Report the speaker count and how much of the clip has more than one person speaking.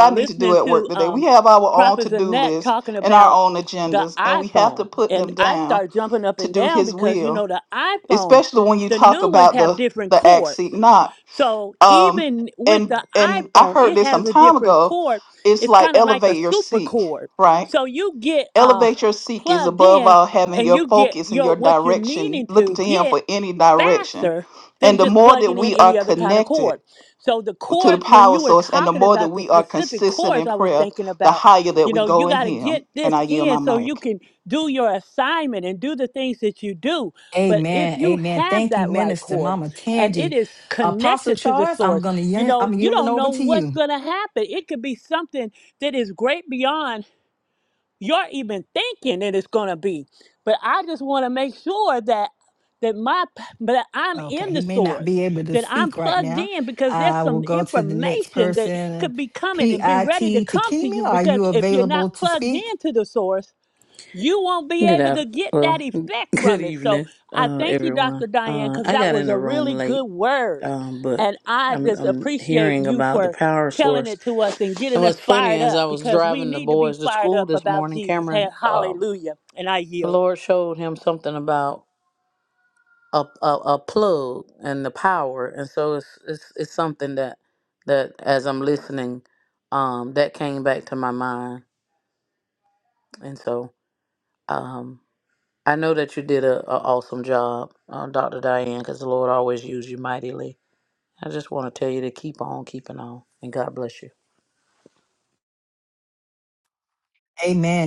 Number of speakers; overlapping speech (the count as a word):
four, about 43%